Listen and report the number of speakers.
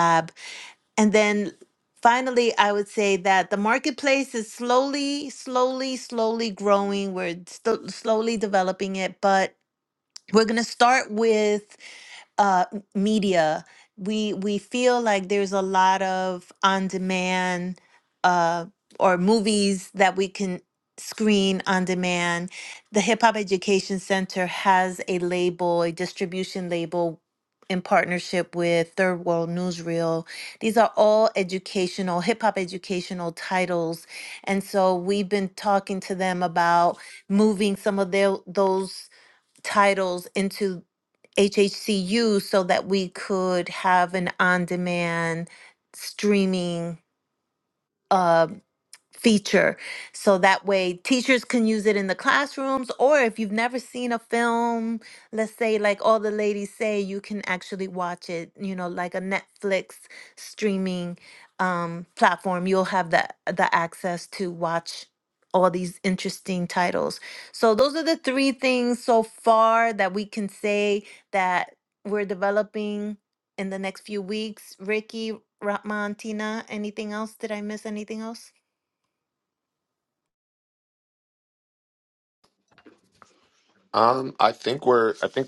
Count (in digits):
2